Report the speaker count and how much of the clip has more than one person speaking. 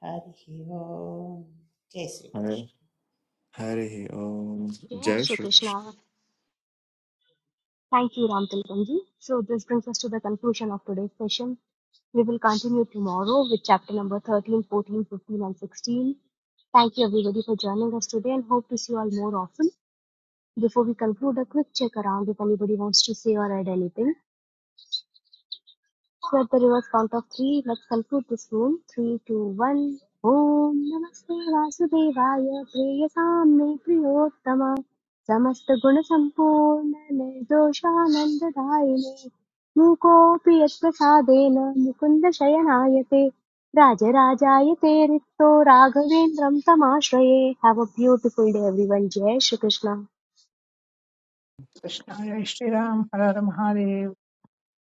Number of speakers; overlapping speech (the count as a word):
four, about 2%